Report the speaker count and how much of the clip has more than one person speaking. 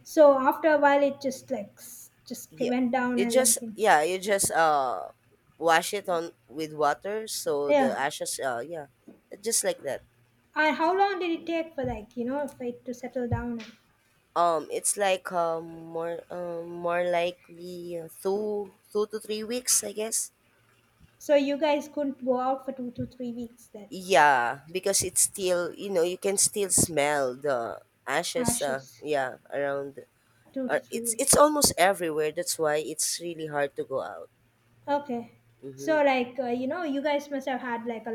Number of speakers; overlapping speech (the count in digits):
2, about 5%